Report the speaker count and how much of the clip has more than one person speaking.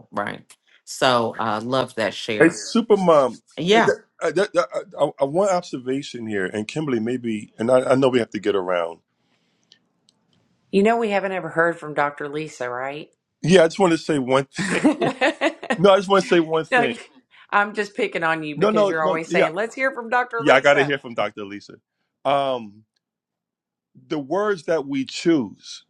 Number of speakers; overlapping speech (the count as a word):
three, about 8%